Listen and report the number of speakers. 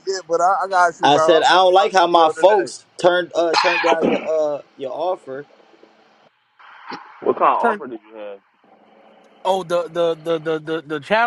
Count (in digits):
4